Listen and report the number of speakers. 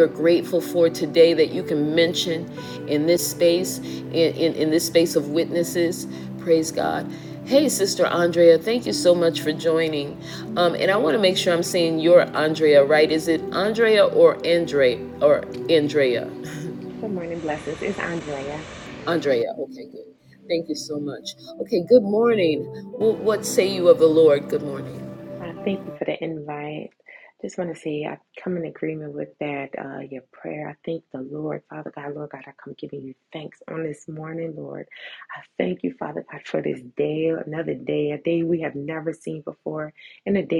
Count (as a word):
two